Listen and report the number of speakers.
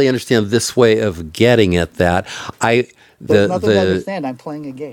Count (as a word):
two